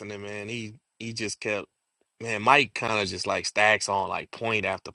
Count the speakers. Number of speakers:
one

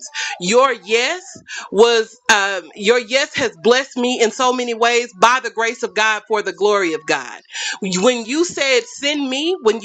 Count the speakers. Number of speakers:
one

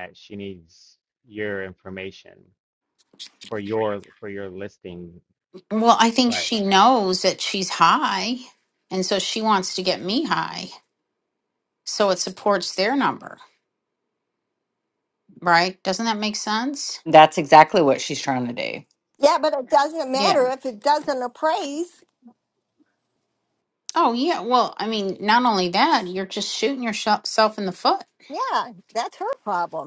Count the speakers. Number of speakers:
four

